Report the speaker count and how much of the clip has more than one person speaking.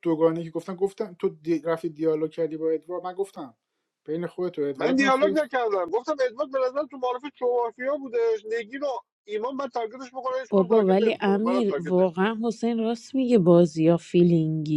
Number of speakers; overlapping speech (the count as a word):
three, about 16%